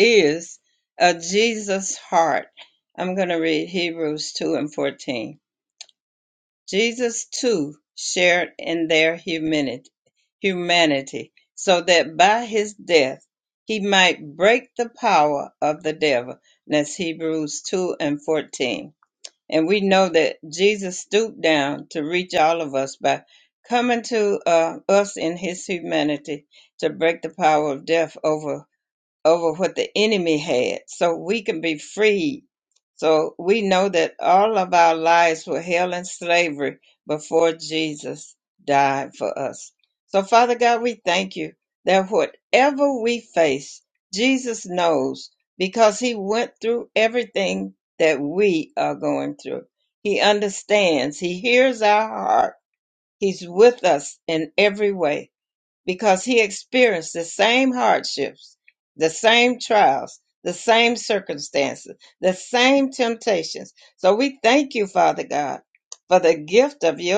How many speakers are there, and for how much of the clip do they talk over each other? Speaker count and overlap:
one, no overlap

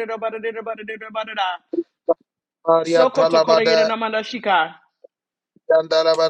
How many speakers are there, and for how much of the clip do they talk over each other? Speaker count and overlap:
two, about 17%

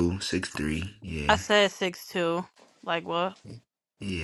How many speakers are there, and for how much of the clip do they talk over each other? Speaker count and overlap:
two, about 2%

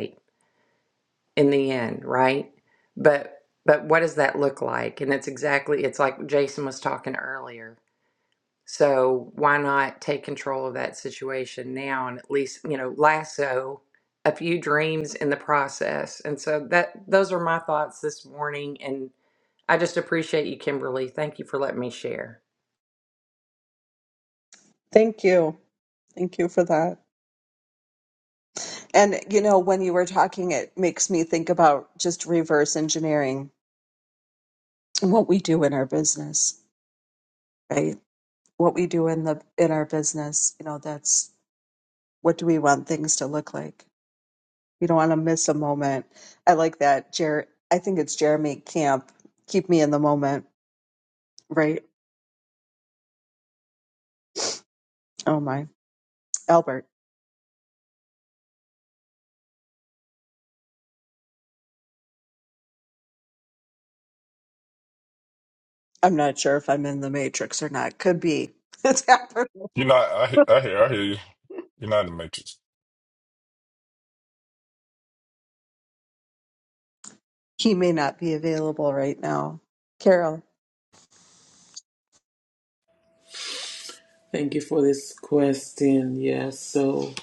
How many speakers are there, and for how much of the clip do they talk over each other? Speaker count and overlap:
four, no overlap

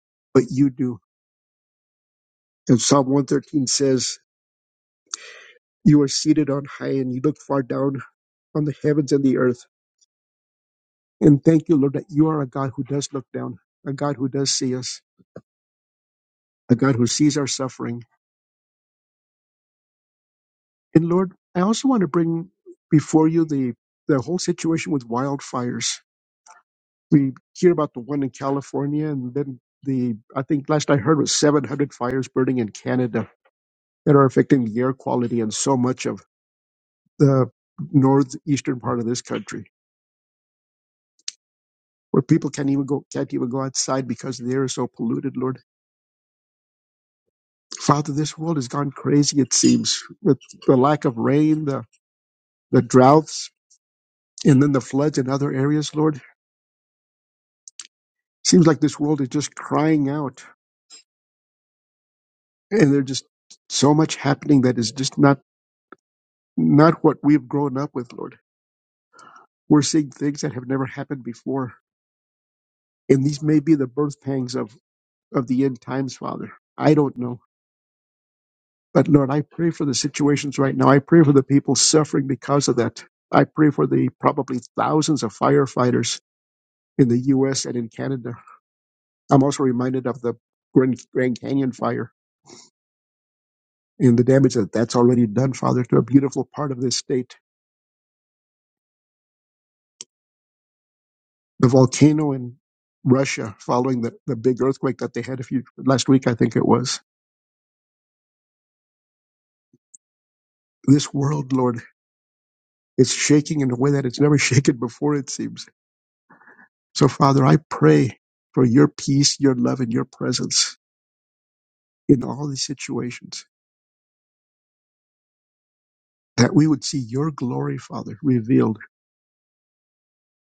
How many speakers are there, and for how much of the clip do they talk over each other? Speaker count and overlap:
one, no overlap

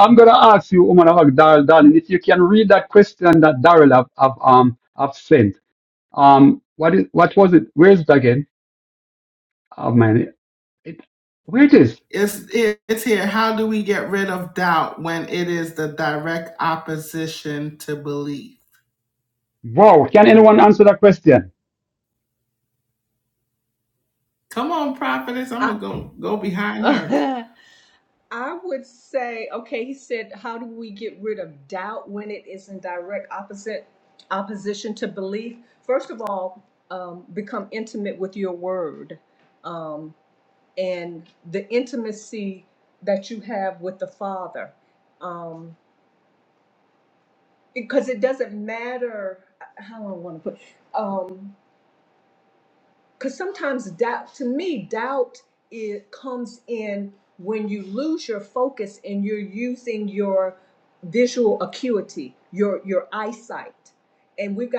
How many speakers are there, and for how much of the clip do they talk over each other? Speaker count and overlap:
three, under 1%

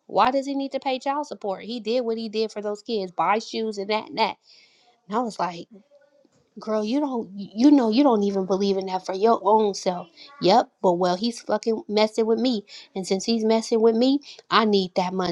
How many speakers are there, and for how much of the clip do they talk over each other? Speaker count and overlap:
one, no overlap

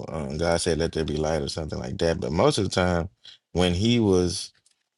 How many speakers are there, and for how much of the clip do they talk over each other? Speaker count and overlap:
one, no overlap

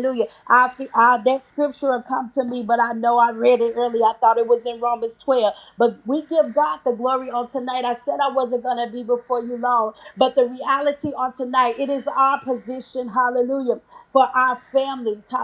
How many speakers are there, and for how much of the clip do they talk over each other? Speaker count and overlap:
one, no overlap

